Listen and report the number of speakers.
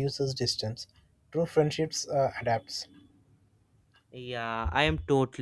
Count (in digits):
2